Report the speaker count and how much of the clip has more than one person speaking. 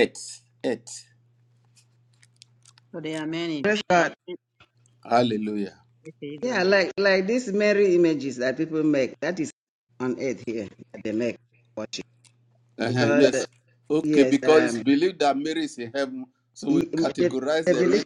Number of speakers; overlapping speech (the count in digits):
3, about 17%